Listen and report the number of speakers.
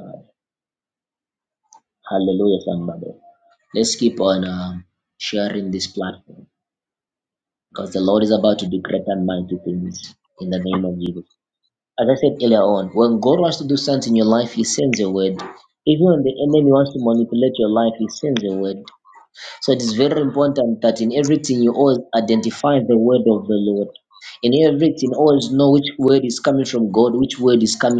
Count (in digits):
1